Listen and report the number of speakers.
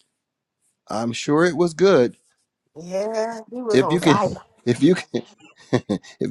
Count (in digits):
2